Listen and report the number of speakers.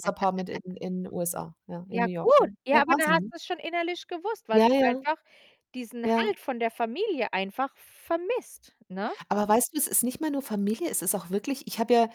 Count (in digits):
2